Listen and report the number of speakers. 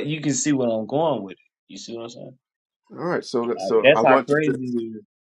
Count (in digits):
2